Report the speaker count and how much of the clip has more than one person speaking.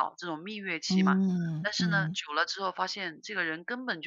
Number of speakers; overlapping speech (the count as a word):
two, about 19%